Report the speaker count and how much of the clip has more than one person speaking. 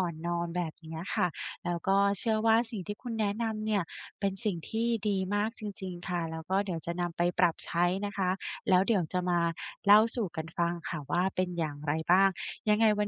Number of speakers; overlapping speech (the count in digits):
1, no overlap